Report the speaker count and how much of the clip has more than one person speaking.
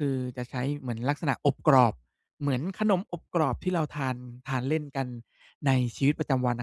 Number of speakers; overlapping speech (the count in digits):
1, no overlap